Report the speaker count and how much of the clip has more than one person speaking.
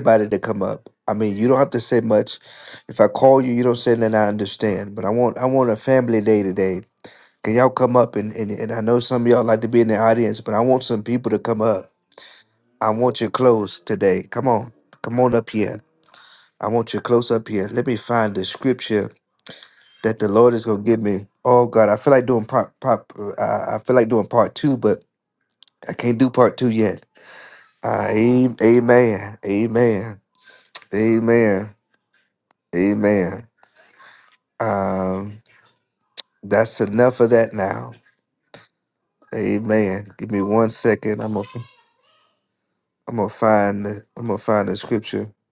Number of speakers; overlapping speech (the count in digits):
1, no overlap